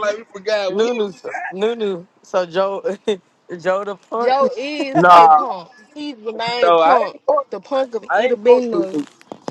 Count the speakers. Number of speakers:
three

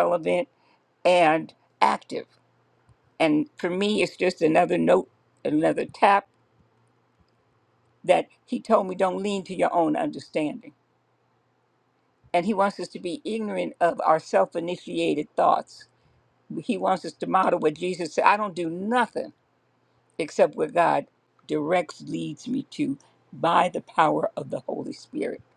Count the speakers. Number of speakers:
one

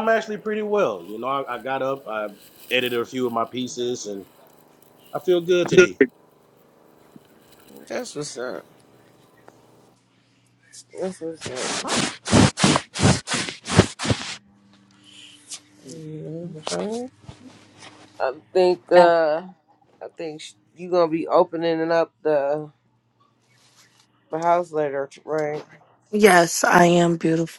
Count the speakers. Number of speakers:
three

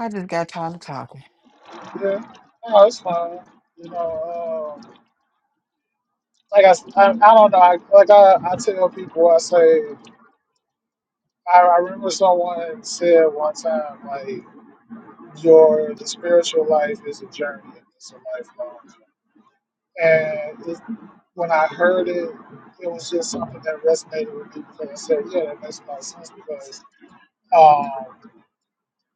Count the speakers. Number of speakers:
two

